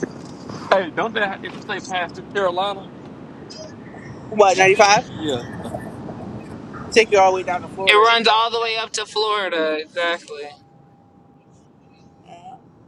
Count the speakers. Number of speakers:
3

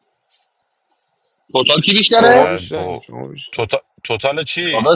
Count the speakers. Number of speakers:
3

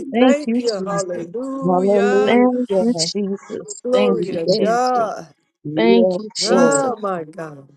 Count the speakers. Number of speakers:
3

